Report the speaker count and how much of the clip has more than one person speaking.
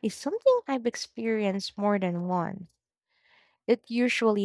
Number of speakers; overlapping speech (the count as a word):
one, no overlap